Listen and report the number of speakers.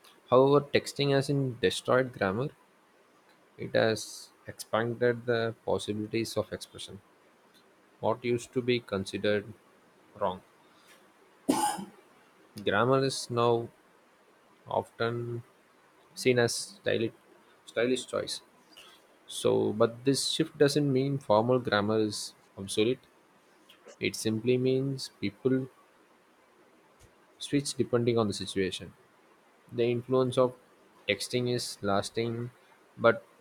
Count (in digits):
1